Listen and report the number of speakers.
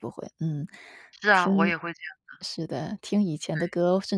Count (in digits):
2